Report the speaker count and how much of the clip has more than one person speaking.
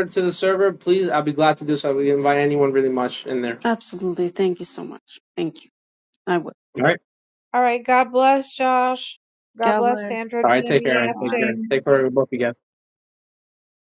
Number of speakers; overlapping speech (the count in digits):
3, about 13%